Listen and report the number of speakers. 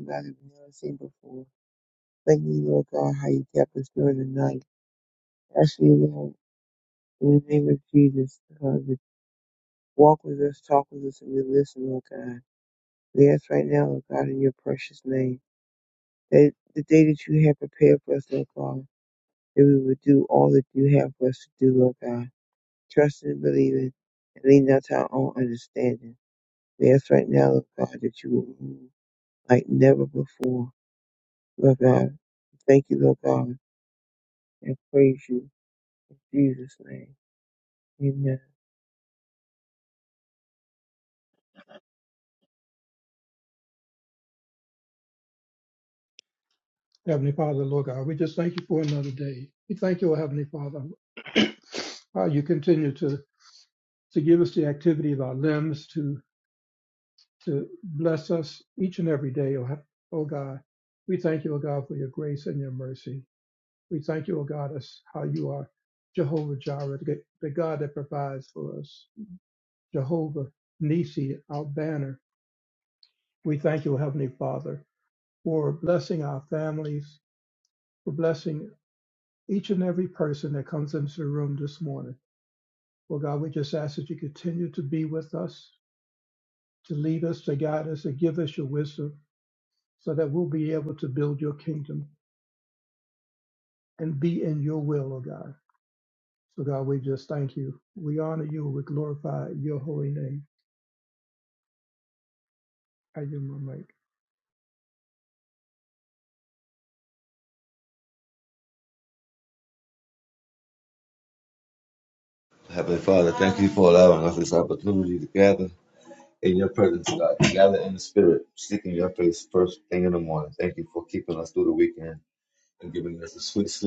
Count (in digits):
3